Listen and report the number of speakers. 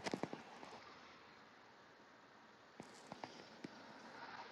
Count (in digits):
0